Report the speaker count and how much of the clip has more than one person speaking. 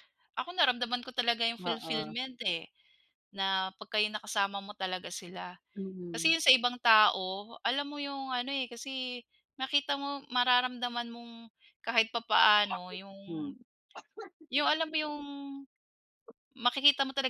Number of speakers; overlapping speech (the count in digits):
2, about 4%